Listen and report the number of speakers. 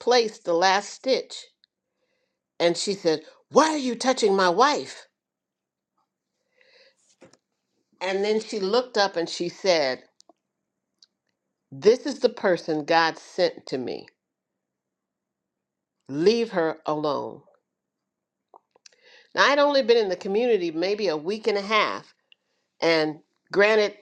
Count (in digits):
1